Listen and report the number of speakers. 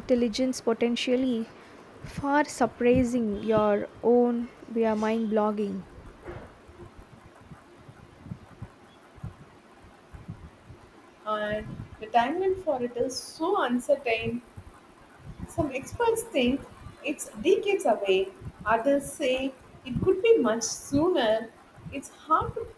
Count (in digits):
2